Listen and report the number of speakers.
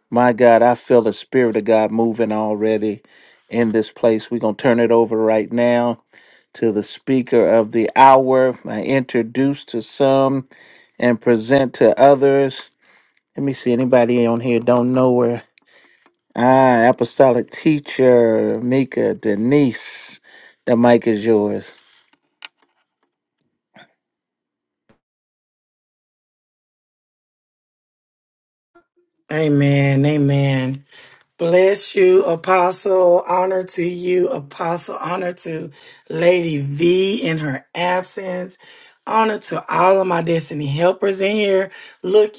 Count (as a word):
two